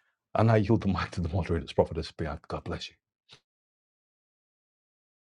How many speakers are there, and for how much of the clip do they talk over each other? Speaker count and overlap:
one, no overlap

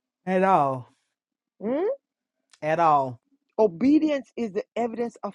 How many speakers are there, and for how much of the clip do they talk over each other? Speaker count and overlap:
two, no overlap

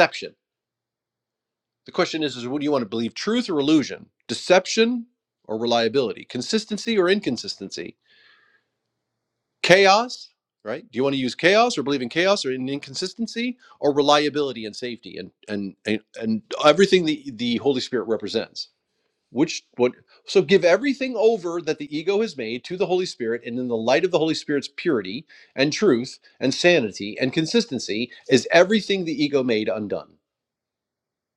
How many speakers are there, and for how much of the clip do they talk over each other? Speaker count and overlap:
one, no overlap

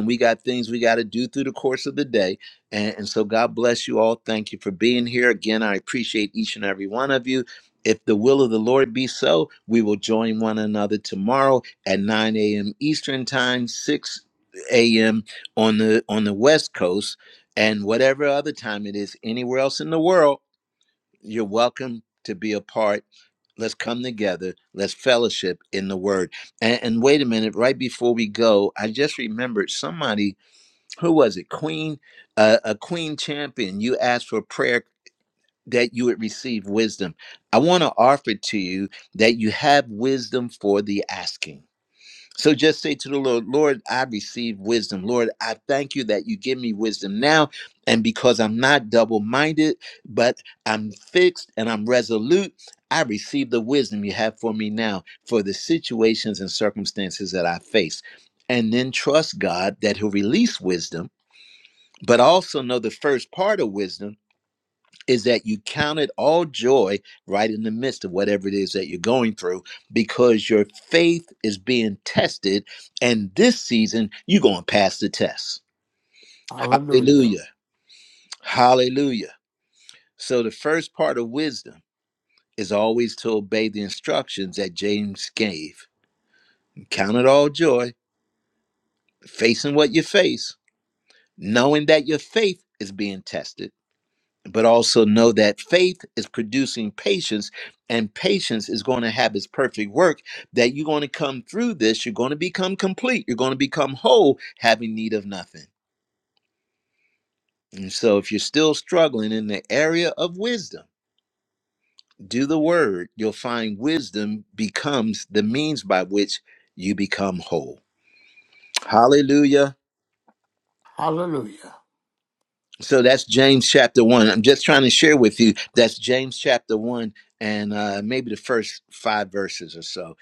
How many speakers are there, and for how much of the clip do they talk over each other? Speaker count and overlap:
two, under 1%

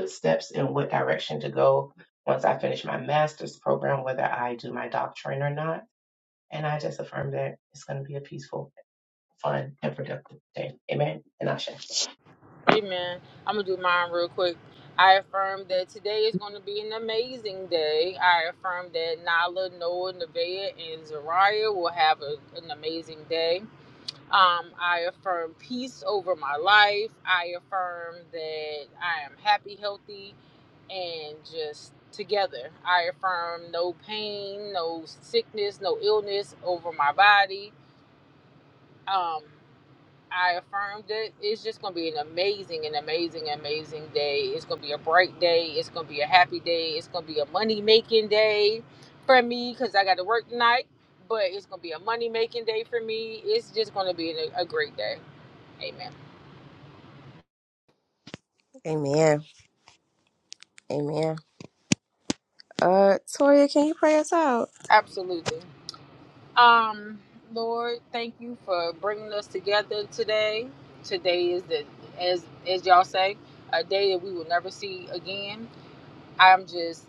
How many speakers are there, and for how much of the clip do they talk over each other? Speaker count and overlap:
three, no overlap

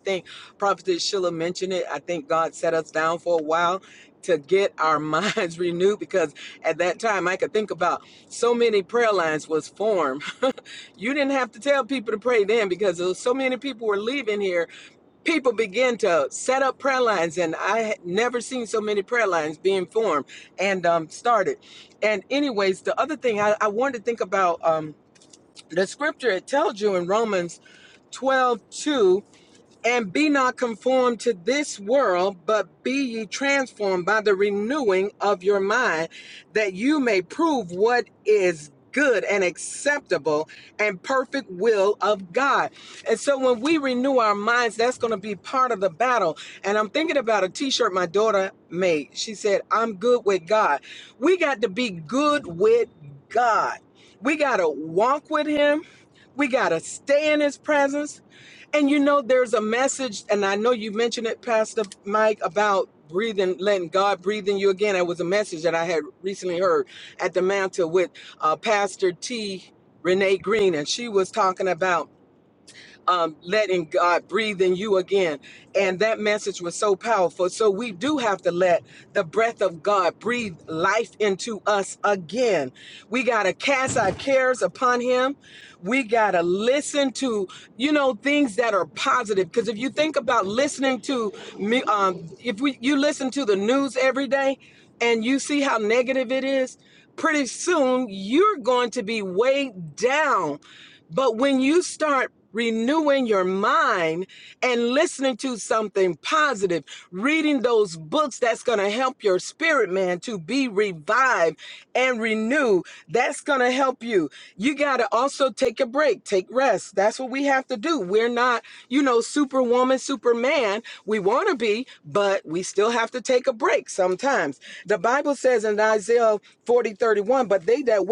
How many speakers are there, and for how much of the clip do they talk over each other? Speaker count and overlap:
one, no overlap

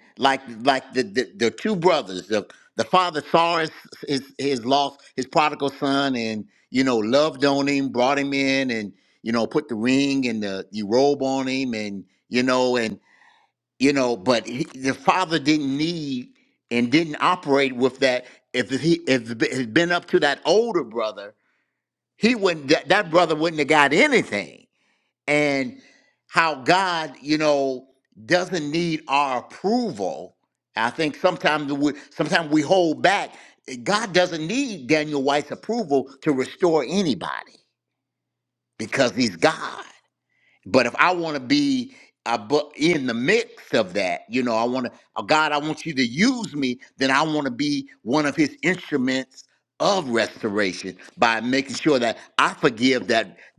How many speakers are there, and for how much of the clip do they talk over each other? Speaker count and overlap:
one, no overlap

